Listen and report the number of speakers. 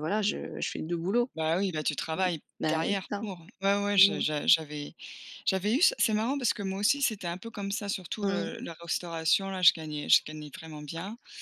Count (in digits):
2